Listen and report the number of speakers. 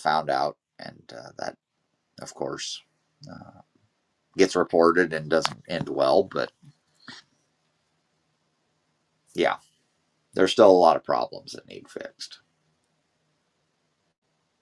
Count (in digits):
1